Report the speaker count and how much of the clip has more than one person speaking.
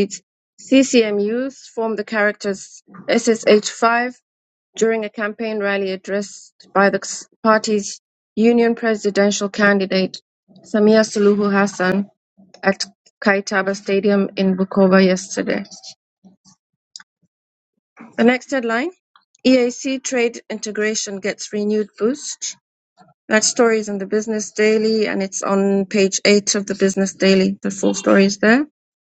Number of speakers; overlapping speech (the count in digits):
1, no overlap